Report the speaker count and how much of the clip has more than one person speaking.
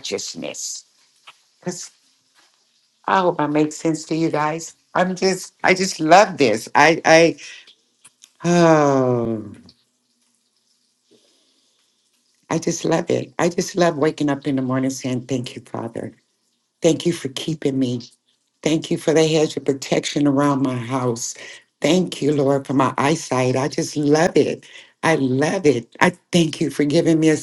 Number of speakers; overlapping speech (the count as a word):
one, no overlap